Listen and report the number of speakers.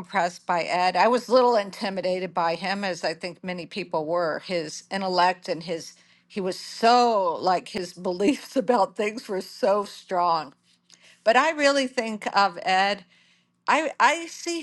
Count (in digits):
1